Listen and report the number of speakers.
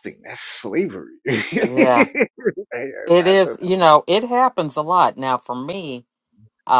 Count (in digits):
2